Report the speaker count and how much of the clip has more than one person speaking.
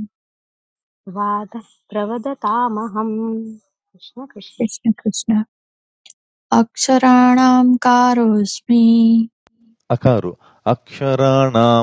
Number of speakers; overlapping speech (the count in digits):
3, about 1%